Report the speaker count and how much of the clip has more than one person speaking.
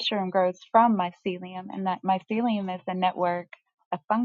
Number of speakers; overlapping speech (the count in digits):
1, no overlap